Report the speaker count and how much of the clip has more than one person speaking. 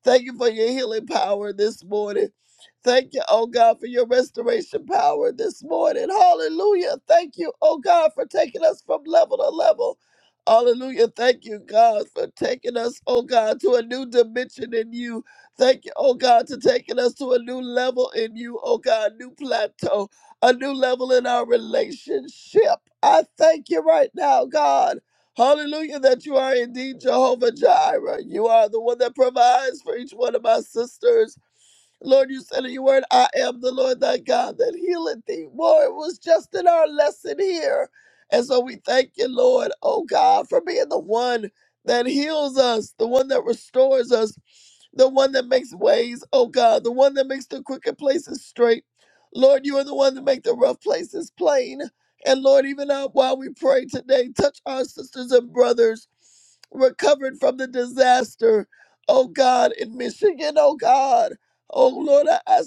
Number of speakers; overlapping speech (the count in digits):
1, no overlap